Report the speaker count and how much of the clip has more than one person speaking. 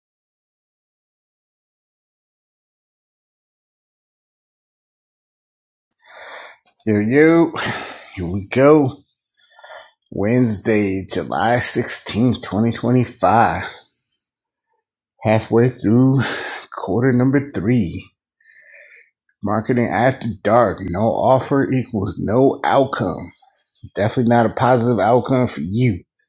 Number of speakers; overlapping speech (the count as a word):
one, no overlap